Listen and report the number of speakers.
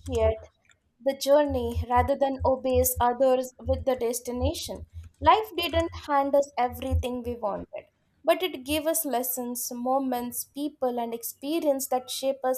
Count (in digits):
1